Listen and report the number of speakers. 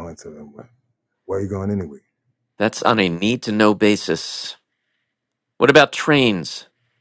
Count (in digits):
2